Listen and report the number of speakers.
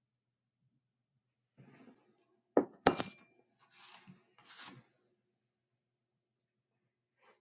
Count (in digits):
0